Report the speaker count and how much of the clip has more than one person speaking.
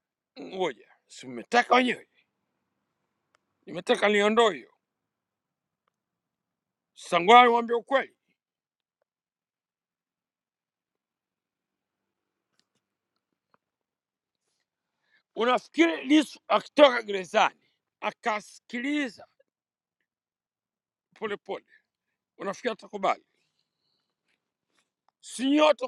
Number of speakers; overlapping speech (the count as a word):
one, no overlap